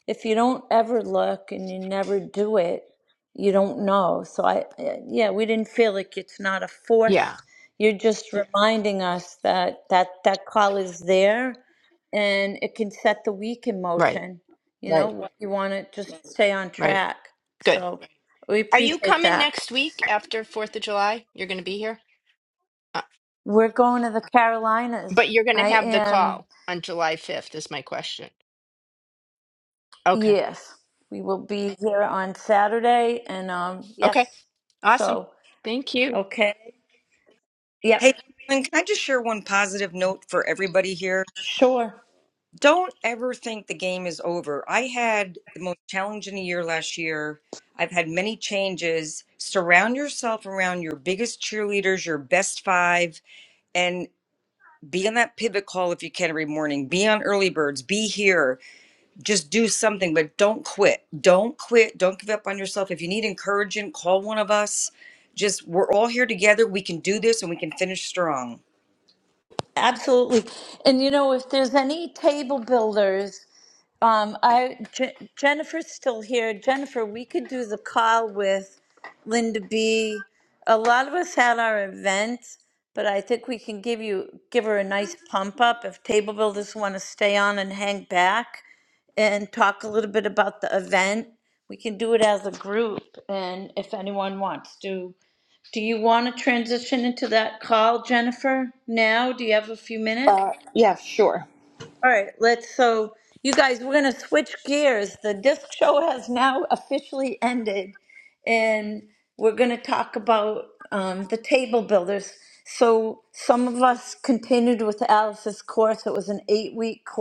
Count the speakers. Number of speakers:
4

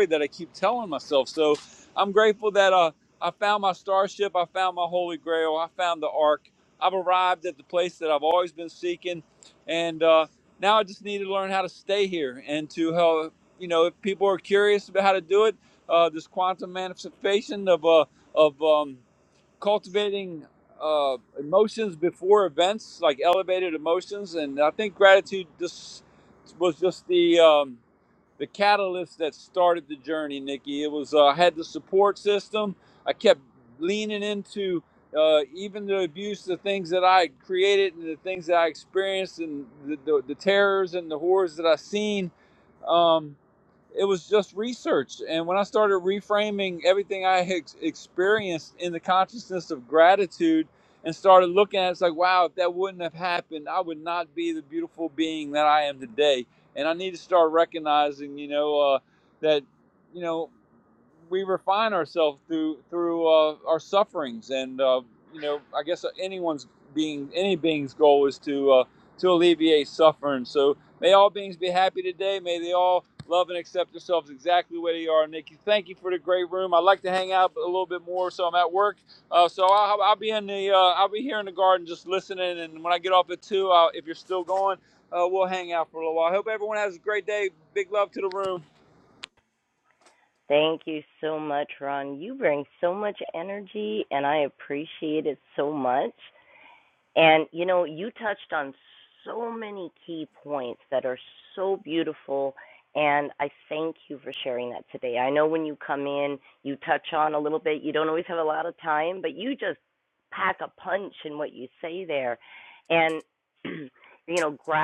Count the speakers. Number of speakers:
2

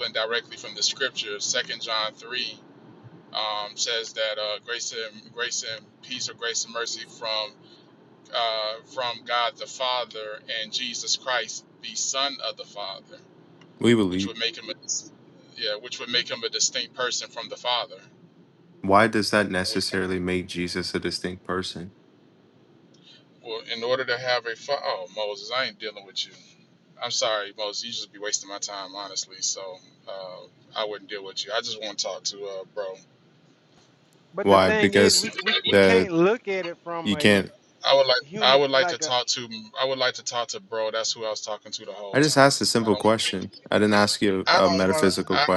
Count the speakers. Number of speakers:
3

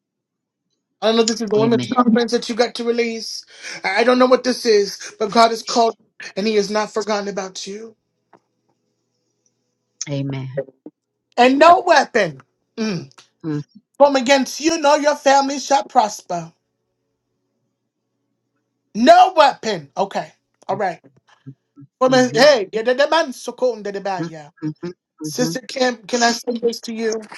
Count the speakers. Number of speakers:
2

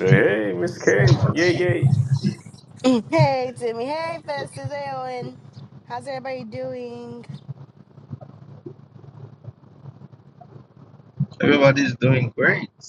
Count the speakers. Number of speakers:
3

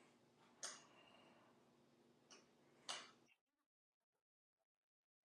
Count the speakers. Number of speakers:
0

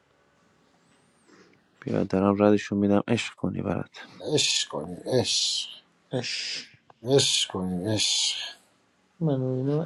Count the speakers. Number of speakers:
3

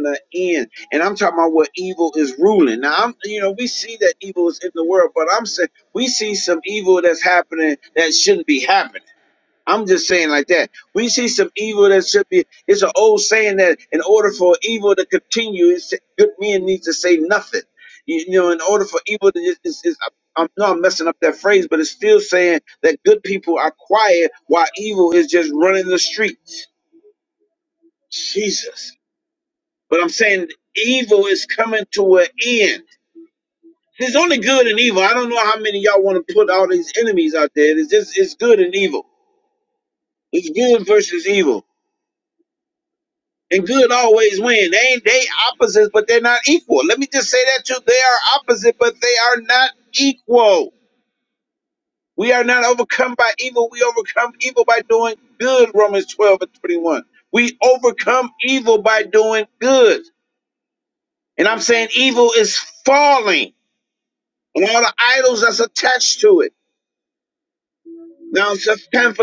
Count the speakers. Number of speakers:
1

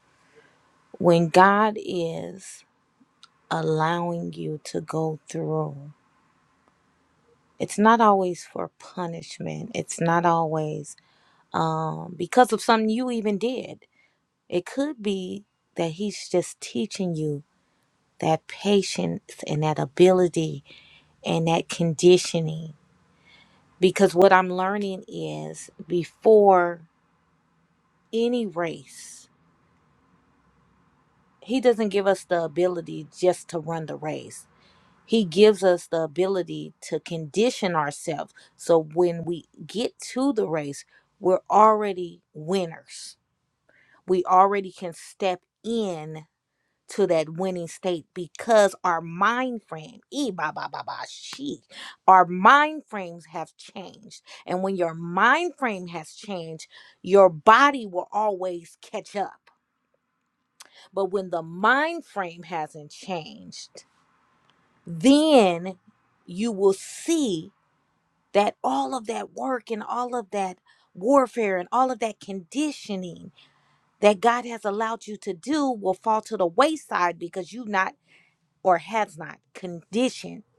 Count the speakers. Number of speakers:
1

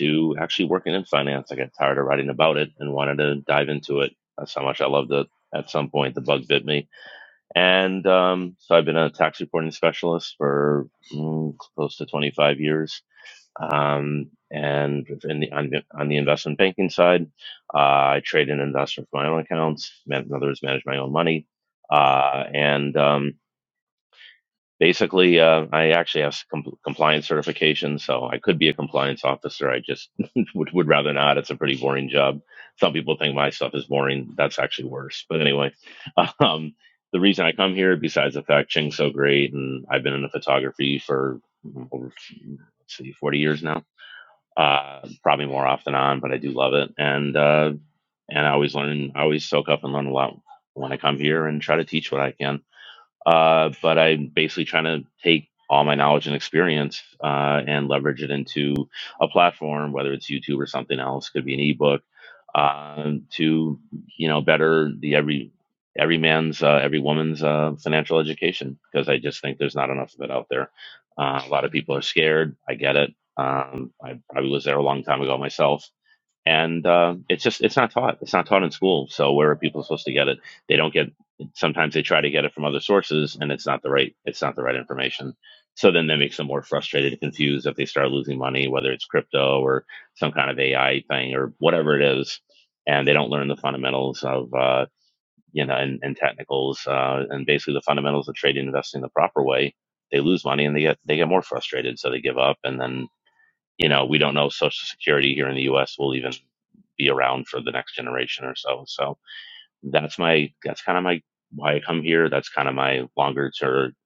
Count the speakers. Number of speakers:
1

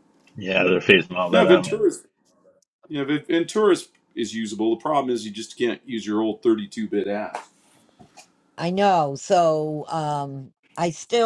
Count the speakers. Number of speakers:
3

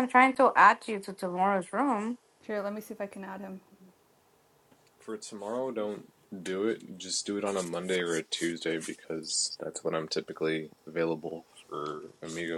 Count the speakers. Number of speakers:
3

